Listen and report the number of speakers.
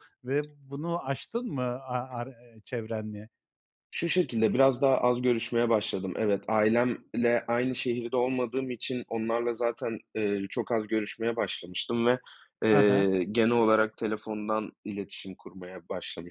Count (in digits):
2